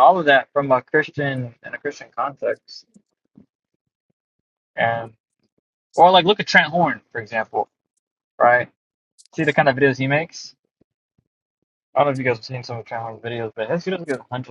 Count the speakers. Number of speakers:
one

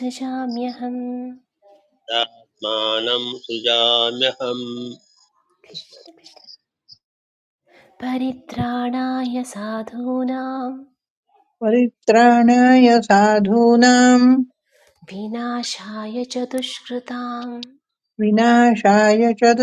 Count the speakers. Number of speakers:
three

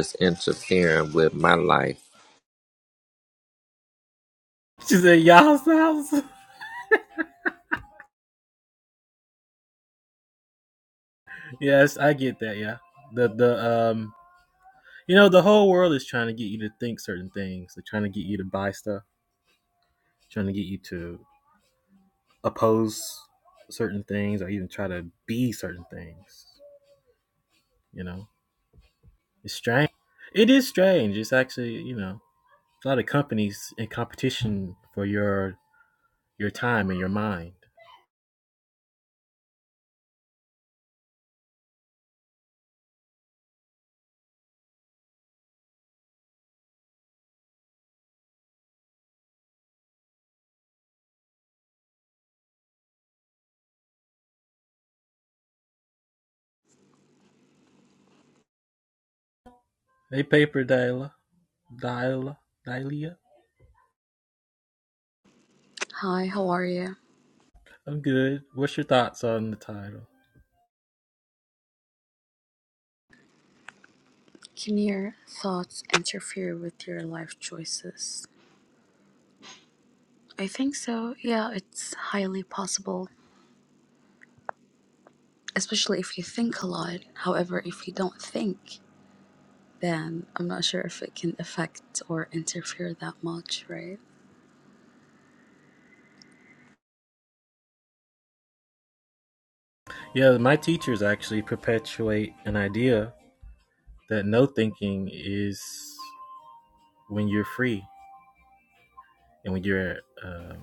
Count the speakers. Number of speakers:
three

